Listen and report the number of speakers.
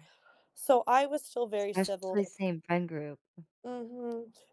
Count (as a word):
two